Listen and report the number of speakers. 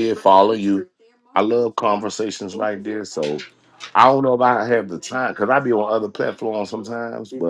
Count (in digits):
1